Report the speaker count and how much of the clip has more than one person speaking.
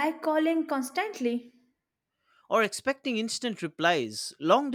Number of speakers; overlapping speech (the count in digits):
2, no overlap